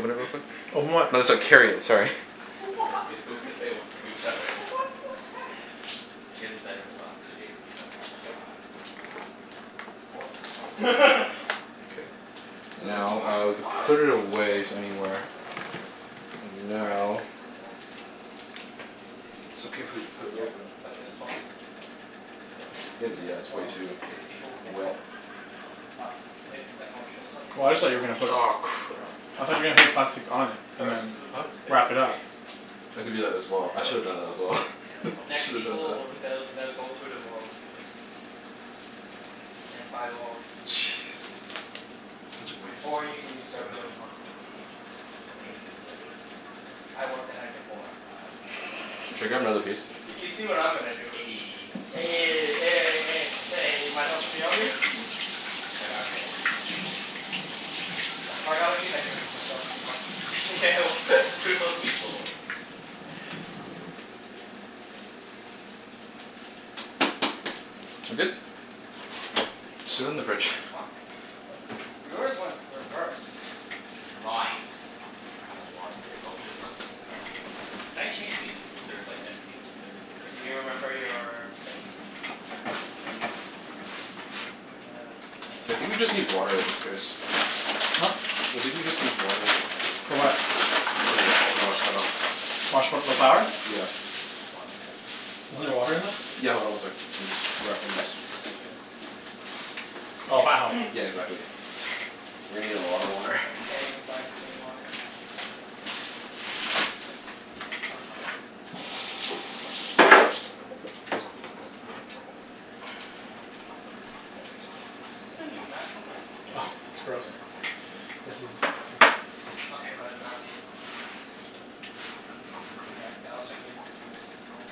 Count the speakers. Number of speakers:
four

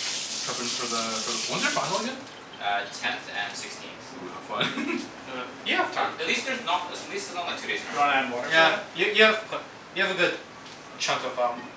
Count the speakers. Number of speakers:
four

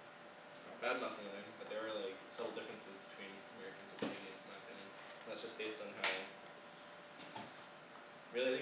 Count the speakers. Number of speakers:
one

